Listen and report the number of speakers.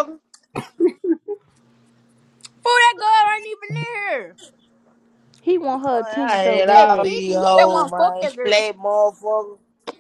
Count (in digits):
3